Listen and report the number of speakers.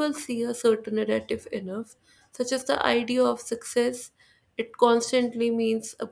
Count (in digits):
1